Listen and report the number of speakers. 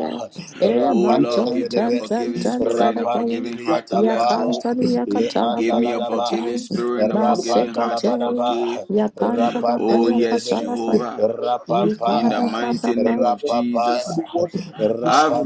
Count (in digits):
3